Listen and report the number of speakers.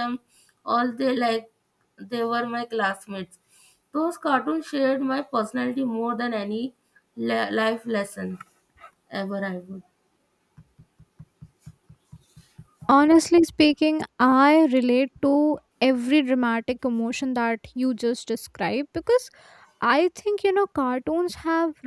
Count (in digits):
2